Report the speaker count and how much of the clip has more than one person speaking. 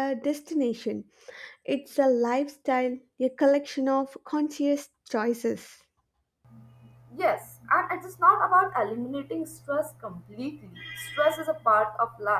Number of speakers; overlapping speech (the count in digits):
2, no overlap